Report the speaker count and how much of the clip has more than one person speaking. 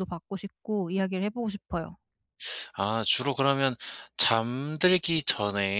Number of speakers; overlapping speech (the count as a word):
two, no overlap